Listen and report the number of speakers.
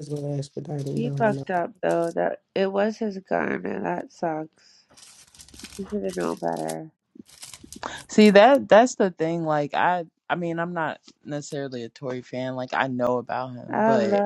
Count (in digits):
3